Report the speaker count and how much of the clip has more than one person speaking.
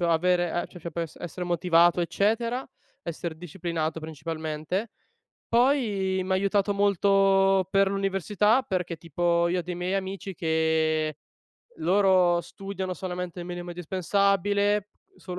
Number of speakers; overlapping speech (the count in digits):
1, no overlap